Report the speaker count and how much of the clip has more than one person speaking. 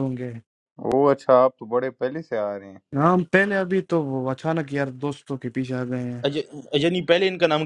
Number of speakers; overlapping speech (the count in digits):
3, no overlap